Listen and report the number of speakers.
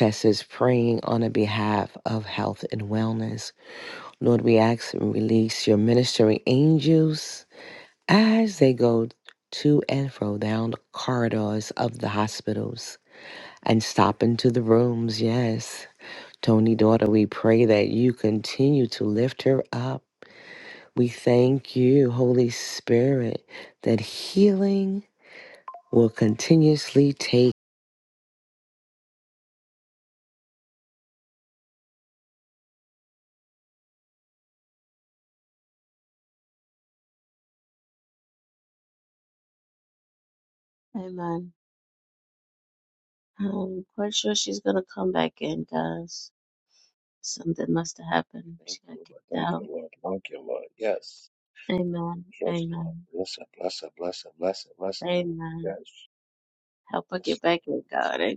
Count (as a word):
three